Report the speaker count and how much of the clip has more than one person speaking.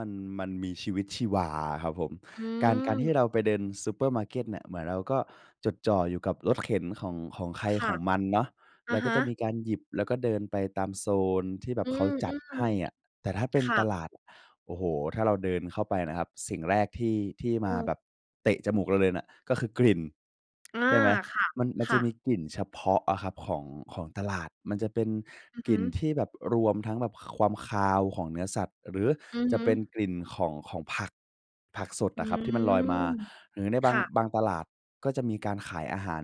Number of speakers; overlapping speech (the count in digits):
2, about 8%